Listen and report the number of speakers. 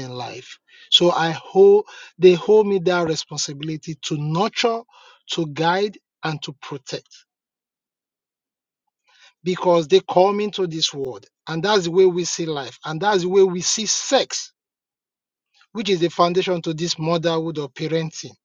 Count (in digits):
1